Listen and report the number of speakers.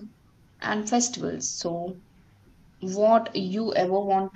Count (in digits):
1